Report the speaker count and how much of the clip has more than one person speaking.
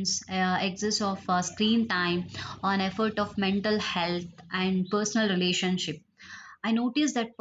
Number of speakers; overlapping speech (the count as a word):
one, no overlap